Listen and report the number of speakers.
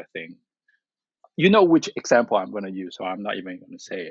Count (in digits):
1